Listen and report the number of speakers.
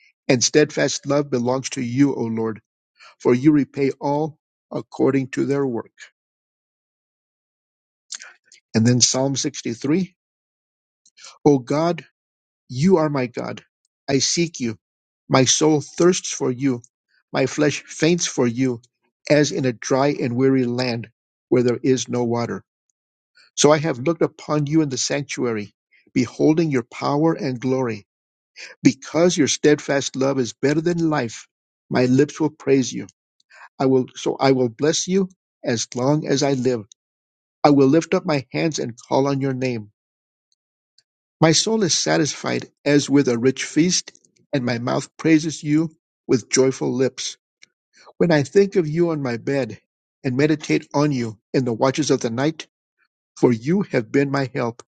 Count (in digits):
1